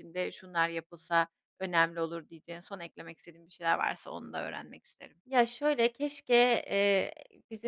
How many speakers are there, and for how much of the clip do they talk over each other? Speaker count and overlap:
2, no overlap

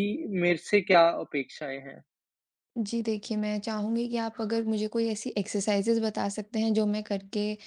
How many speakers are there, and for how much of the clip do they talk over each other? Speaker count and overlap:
2, no overlap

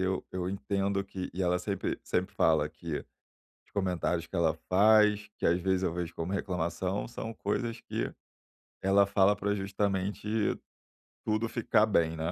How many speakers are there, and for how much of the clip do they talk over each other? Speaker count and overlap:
1, no overlap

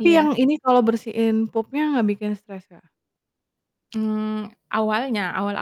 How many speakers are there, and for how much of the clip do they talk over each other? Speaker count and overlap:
2, about 4%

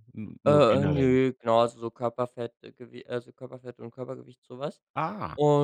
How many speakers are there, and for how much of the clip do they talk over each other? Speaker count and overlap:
2, about 13%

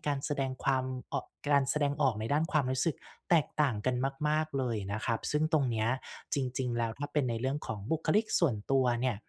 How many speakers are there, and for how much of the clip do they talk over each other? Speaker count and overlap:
1, no overlap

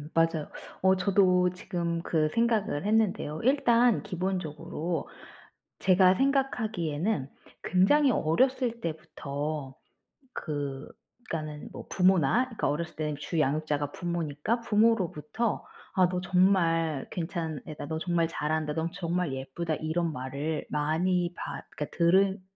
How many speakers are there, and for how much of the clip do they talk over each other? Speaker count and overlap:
1, no overlap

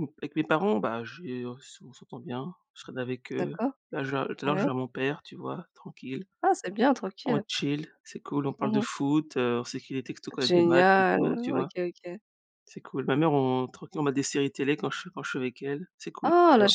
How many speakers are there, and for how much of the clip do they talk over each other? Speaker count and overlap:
2, about 16%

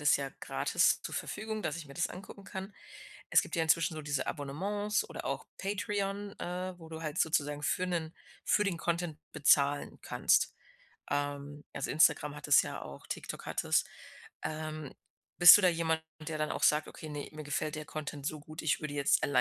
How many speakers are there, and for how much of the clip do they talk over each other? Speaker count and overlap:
1, no overlap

